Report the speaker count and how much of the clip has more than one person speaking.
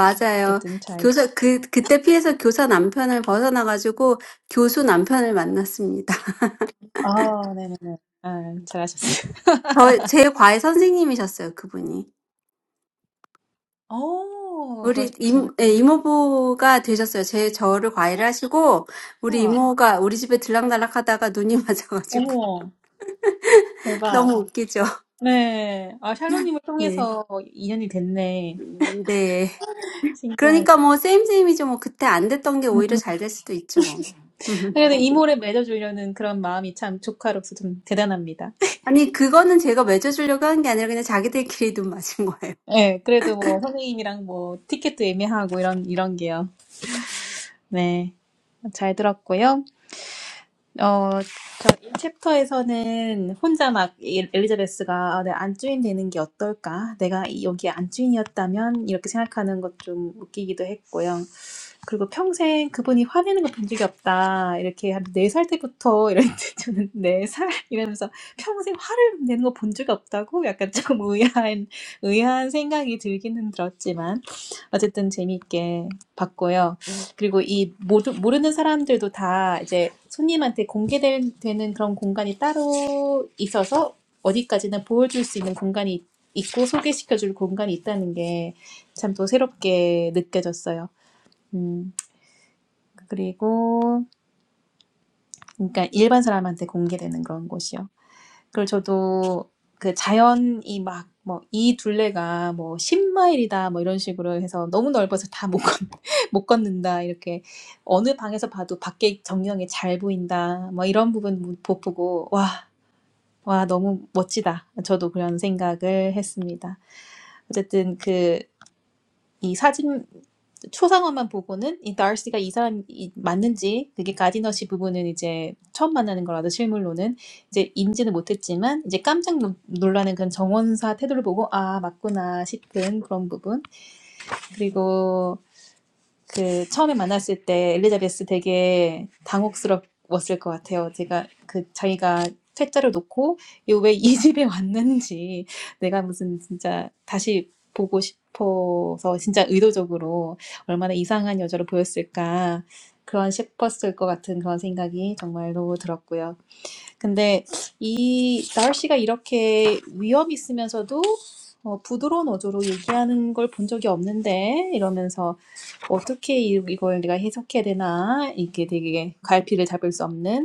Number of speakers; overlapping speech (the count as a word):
two, about 2%